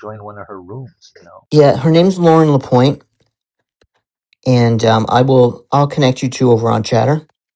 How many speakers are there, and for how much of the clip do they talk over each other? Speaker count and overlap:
two, about 1%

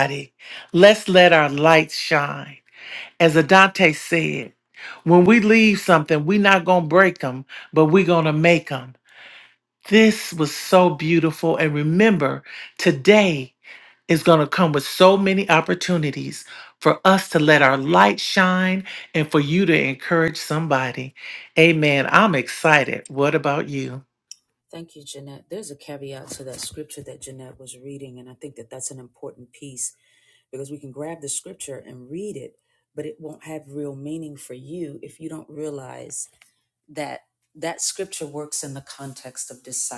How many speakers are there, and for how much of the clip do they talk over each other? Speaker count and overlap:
two, no overlap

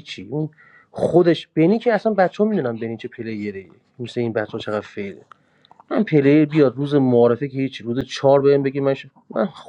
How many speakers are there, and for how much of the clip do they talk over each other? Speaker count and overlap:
one, no overlap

